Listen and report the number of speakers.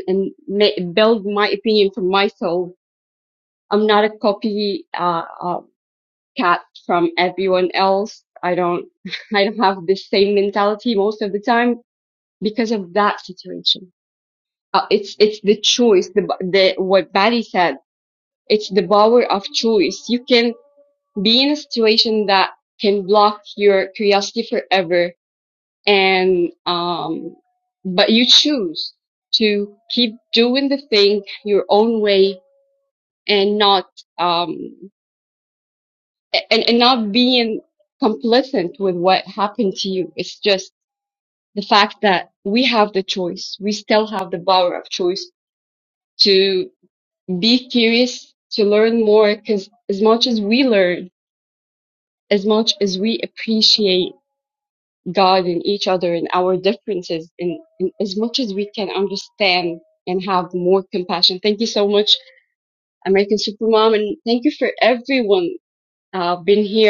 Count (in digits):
1